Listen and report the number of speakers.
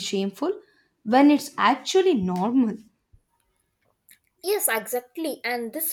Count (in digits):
2